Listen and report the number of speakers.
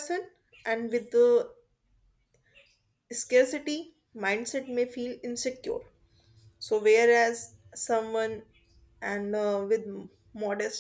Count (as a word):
one